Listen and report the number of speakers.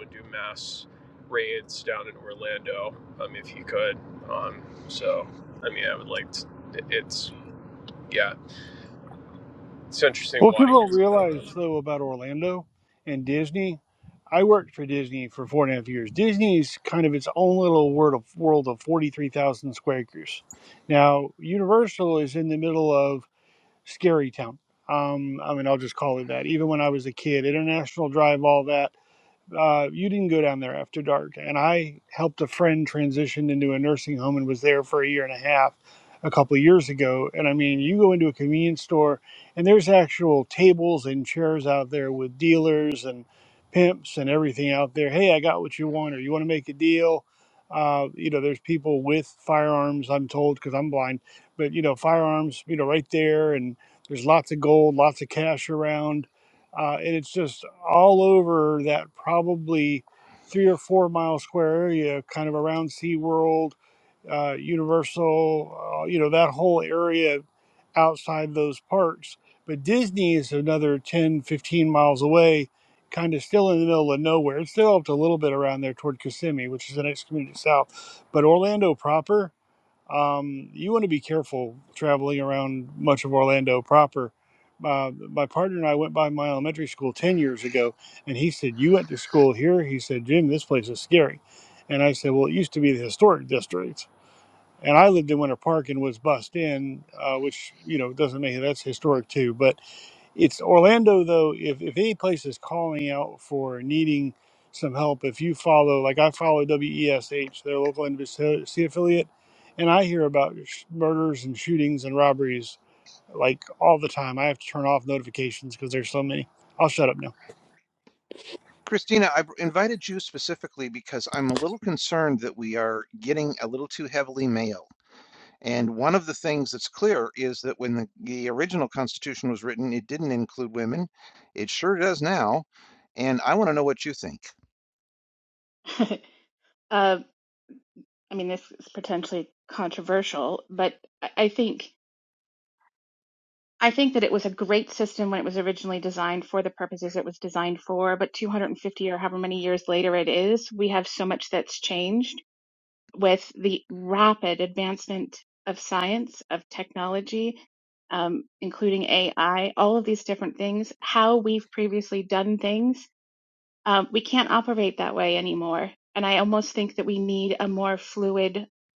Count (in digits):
4